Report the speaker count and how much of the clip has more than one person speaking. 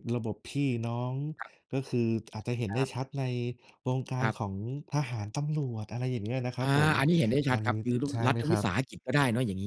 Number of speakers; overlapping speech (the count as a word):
two, about 16%